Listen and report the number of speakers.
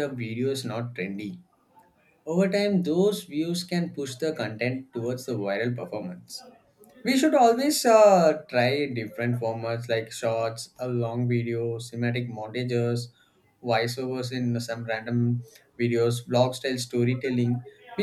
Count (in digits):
1